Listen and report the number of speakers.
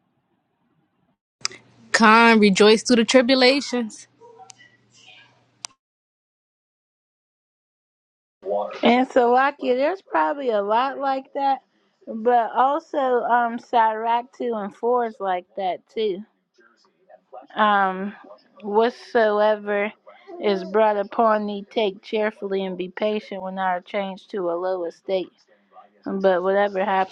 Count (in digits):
2